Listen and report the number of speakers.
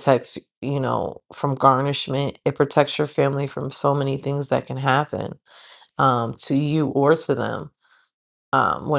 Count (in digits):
1